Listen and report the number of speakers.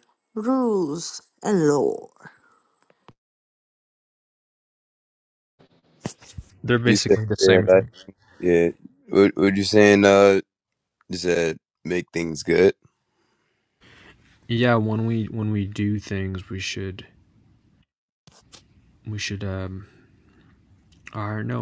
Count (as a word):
three